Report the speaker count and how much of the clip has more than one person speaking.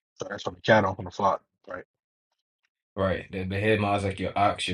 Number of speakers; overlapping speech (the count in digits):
2, no overlap